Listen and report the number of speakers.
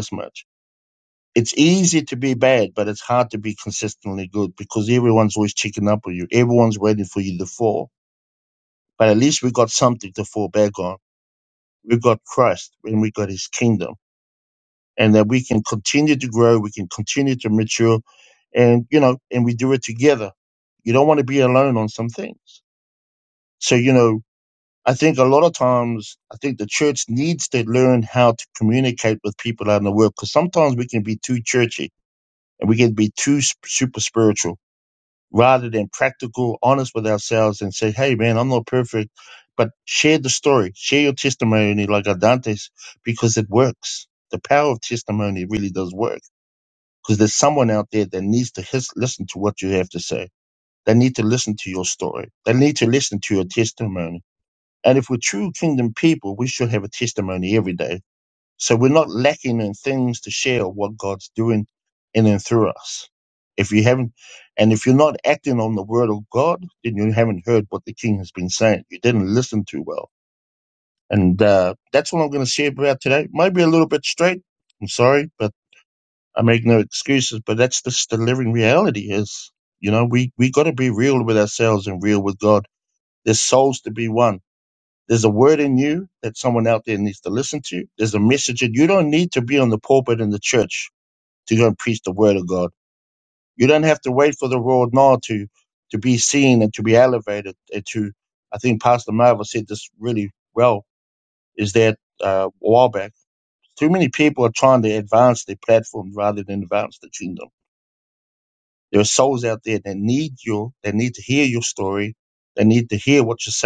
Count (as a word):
one